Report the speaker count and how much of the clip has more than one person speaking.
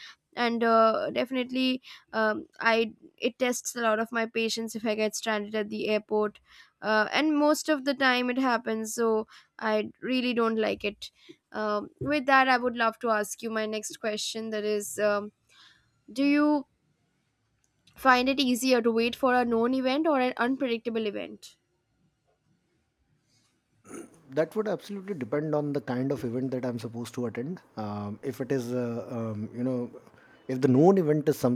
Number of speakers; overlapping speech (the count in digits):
2, no overlap